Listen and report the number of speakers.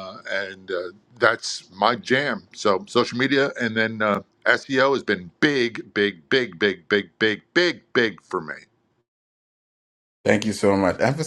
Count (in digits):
2